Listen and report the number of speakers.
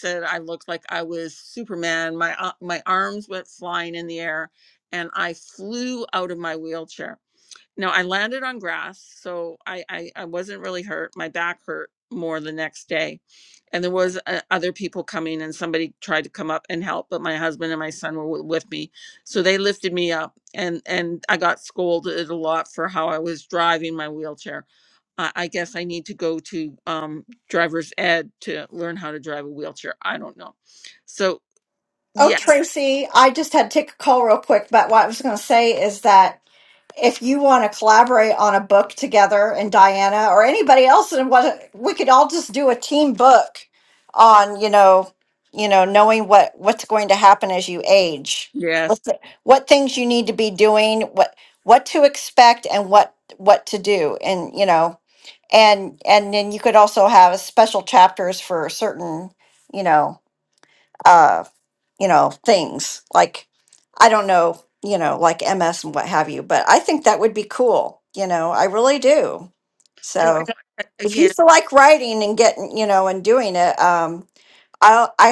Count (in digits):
2